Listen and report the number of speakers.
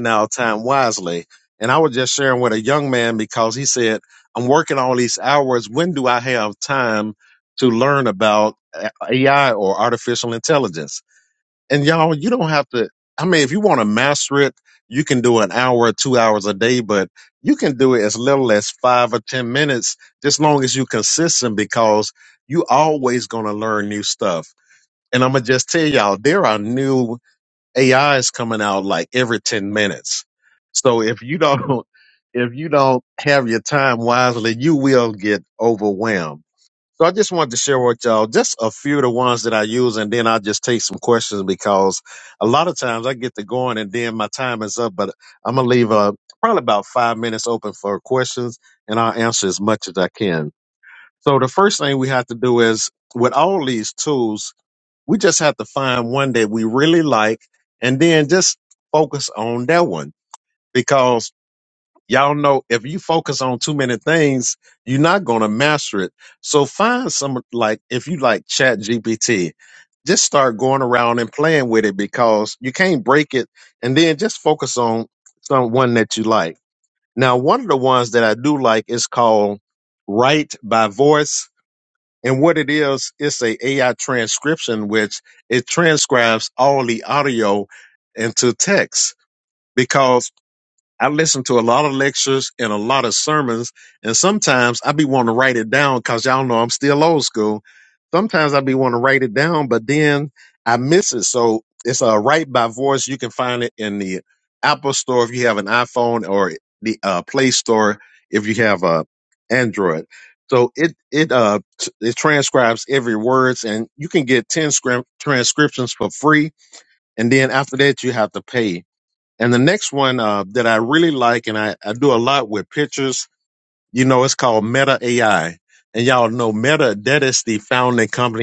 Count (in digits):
1